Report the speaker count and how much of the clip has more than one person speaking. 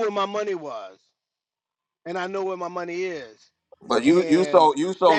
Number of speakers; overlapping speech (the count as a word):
two, about 15%